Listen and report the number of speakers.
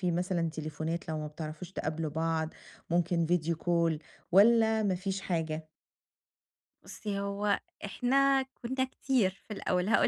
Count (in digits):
2